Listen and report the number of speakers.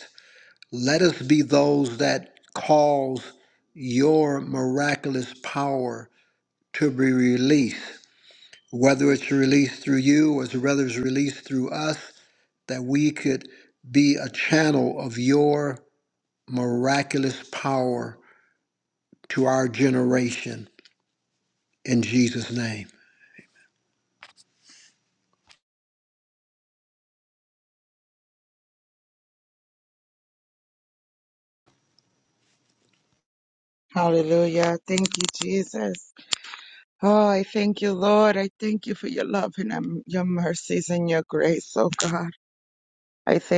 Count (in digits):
2